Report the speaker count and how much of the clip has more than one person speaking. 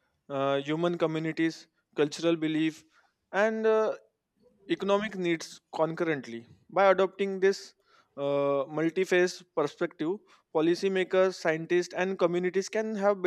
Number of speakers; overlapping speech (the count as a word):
one, no overlap